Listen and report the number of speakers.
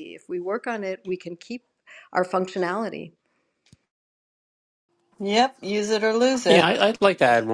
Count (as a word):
three